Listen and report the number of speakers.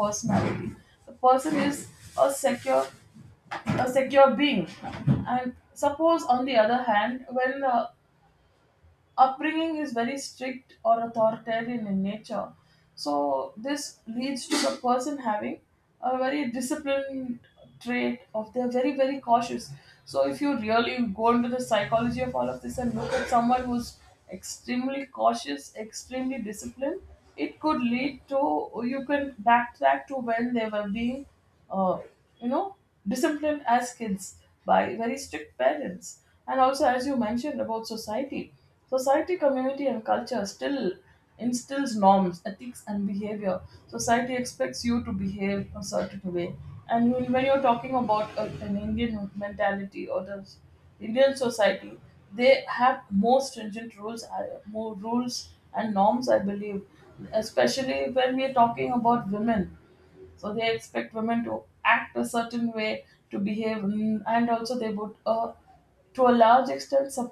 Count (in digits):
1